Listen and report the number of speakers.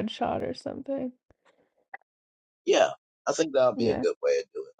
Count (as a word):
two